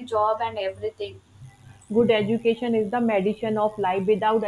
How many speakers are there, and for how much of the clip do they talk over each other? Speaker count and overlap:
2, no overlap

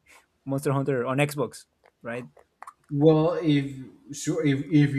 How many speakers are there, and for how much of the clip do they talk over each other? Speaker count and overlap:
2, no overlap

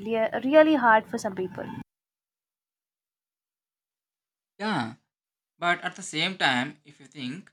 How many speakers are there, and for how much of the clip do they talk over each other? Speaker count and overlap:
2, no overlap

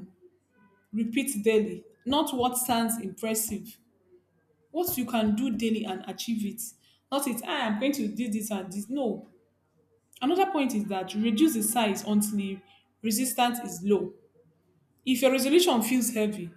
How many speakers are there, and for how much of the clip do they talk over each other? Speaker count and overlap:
1, no overlap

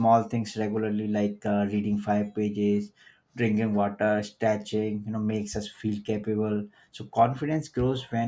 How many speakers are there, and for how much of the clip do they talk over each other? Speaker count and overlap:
1, no overlap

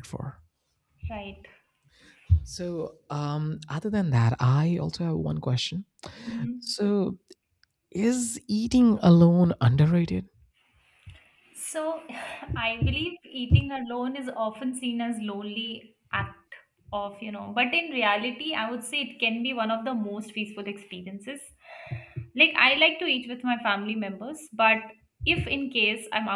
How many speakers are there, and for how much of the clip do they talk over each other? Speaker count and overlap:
2, no overlap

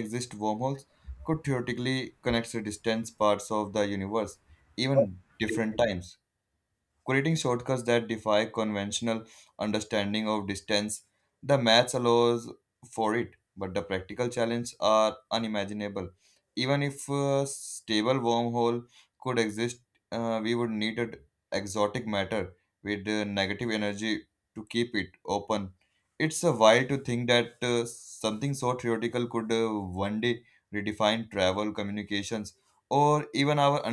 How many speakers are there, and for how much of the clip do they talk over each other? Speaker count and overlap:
1, no overlap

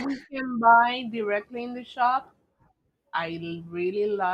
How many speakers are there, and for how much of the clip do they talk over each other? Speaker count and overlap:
1, no overlap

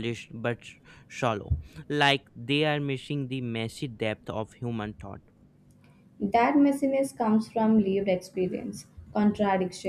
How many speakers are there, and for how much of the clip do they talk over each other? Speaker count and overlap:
2, no overlap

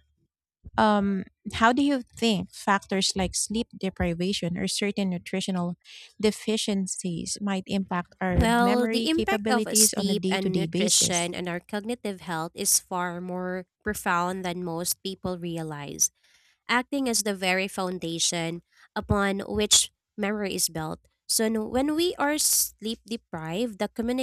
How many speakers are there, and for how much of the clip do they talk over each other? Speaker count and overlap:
2, about 12%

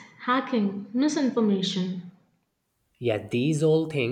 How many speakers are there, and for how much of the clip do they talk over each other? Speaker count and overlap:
2, no overlap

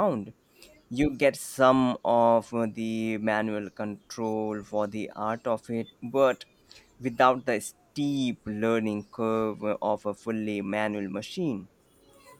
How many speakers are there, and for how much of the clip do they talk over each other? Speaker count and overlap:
1, no overlap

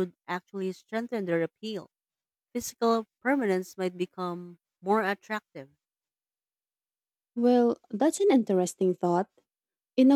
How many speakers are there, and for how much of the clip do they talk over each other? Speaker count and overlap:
2, no overlap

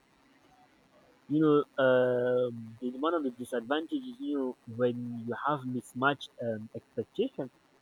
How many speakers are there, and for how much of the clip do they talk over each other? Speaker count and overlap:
1, no overlap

